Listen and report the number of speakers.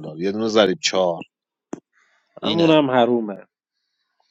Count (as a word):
two